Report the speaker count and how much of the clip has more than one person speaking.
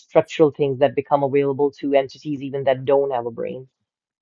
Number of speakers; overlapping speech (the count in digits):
1, no overlap